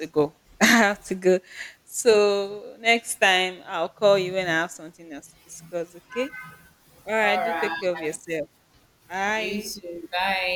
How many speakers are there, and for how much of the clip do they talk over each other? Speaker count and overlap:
2, about 10%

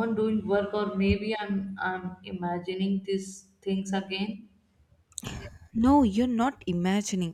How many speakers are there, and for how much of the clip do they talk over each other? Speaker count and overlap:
2, no overlap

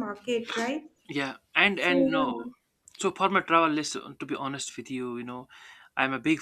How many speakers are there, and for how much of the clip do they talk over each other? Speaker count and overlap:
2, about 8%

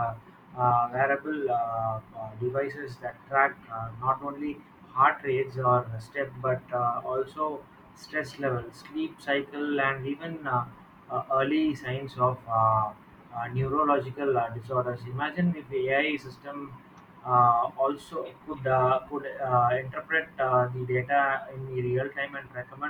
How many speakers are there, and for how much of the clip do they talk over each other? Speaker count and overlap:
1, no overlap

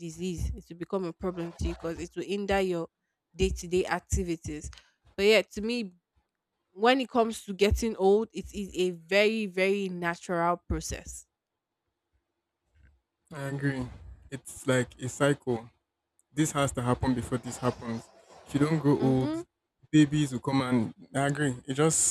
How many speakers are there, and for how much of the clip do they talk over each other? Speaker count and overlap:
2, about 1%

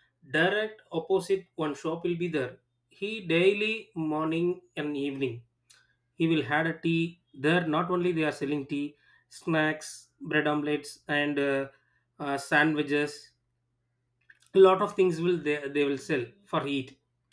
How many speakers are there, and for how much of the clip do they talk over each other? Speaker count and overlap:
1, no overlap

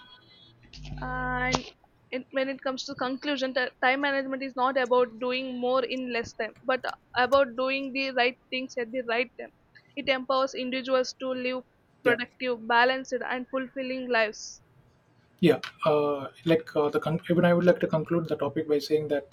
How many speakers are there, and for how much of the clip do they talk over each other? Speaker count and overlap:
2, about 1%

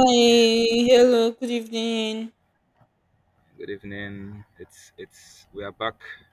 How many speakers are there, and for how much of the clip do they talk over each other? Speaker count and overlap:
2, no overlap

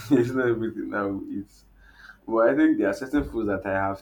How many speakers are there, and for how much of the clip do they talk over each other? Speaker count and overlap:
1, no overlap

